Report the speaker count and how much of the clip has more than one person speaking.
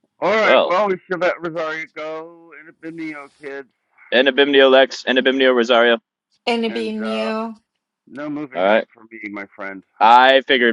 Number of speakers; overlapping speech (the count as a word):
three, about 11%